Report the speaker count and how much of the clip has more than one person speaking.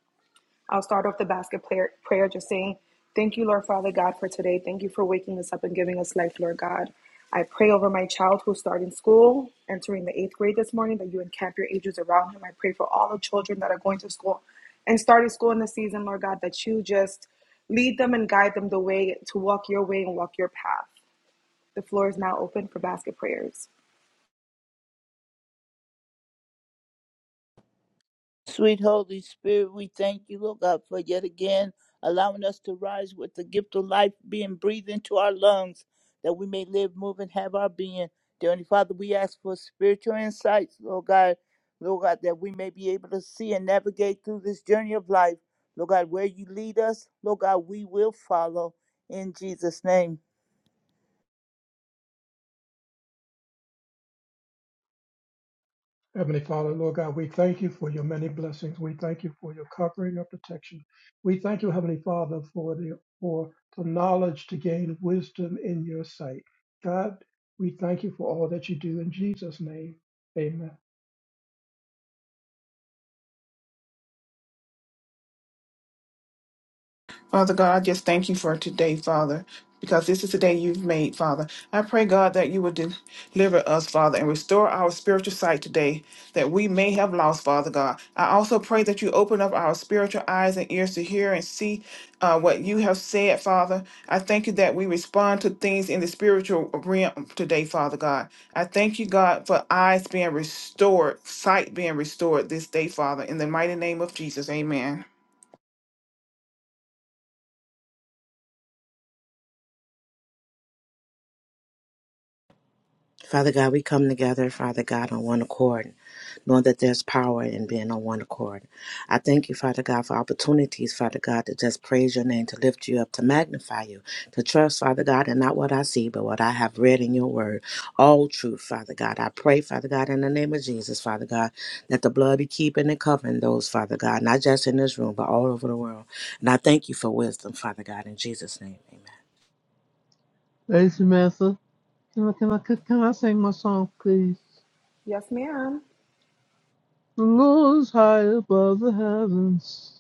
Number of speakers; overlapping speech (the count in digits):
6, no overlap